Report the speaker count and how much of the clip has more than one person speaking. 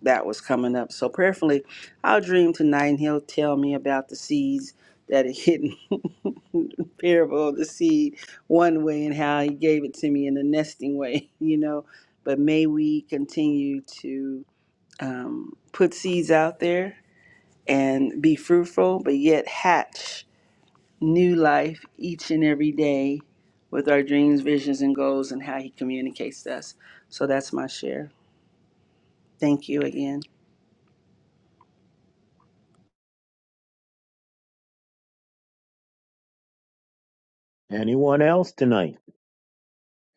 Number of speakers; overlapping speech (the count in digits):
2, no overlap